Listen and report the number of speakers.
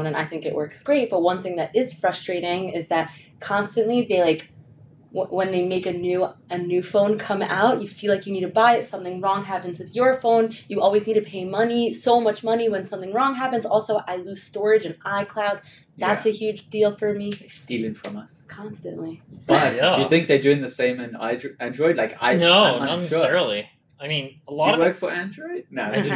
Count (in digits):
3